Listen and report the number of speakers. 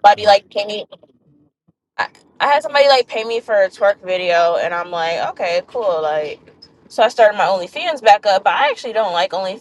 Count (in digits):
1